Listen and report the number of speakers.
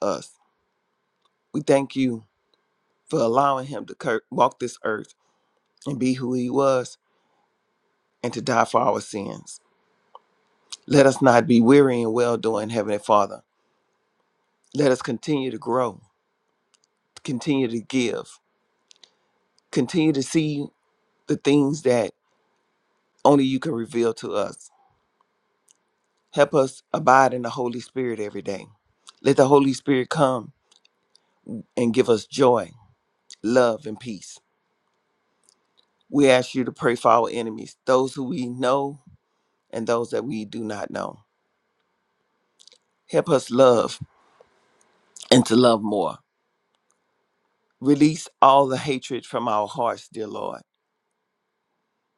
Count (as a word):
one